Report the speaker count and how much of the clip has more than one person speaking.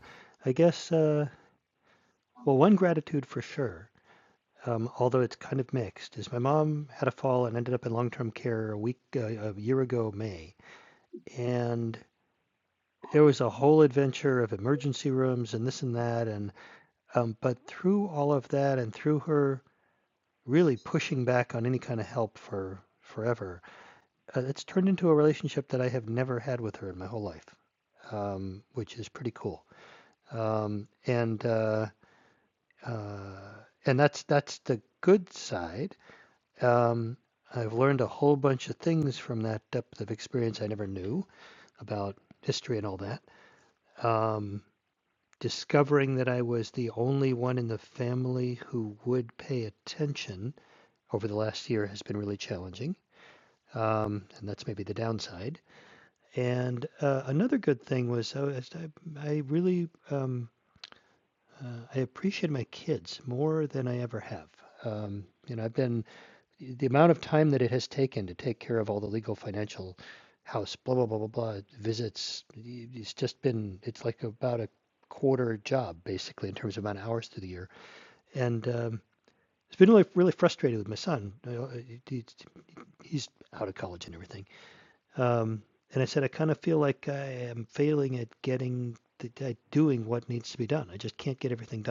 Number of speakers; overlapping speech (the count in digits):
1, no overlap